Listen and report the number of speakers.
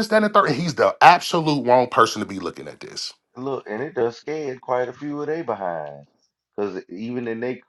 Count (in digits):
2